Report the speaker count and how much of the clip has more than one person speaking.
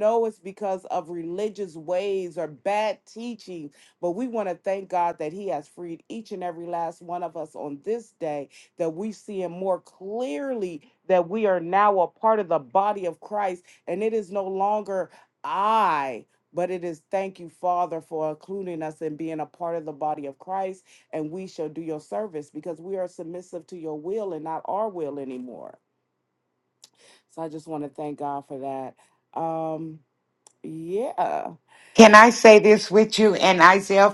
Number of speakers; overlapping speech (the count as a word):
two, no overlap